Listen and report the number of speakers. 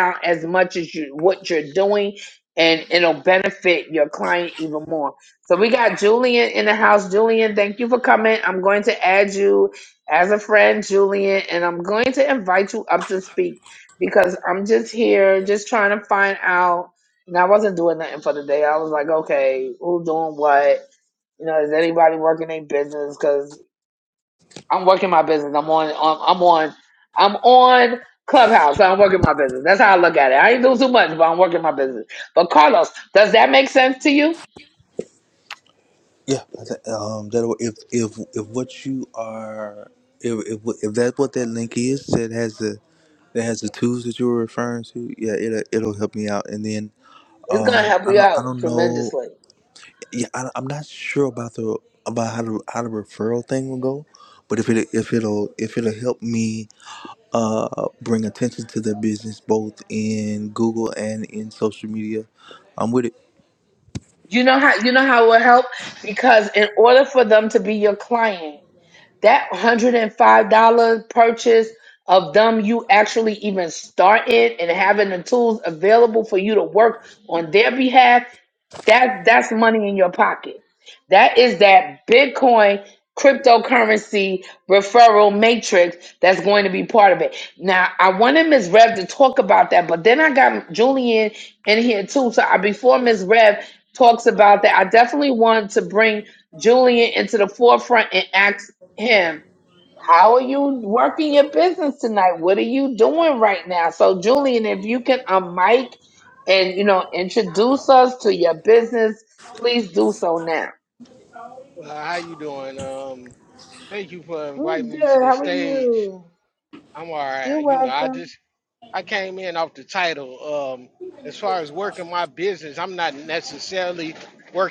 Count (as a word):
three